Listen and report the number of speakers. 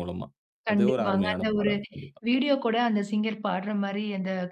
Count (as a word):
two